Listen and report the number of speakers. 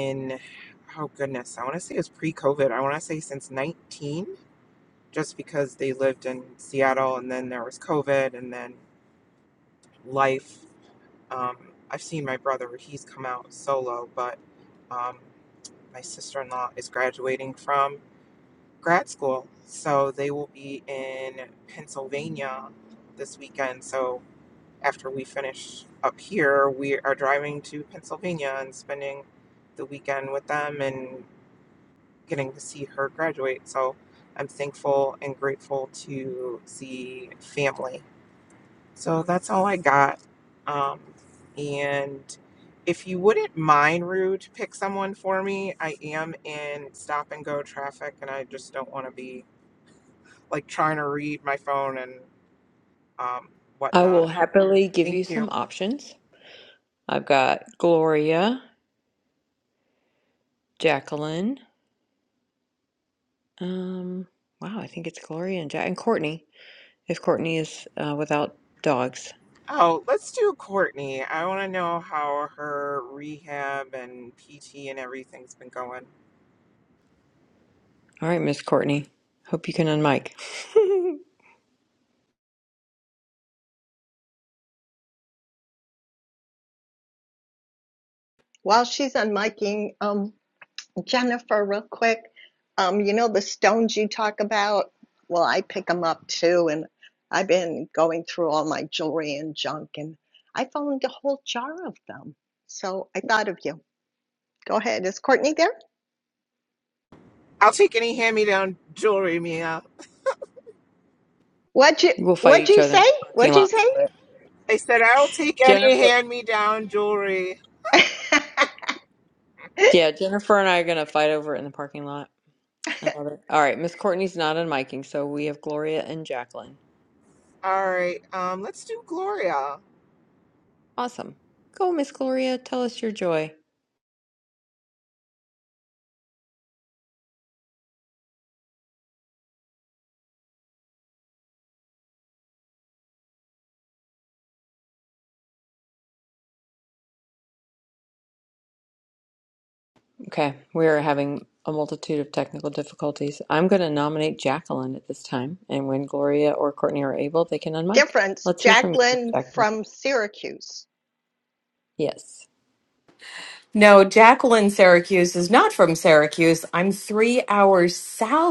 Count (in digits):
4